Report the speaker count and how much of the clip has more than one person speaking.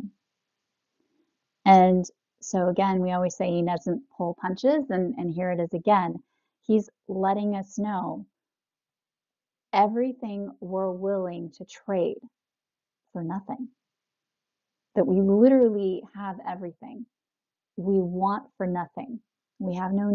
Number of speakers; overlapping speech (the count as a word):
one, no overlap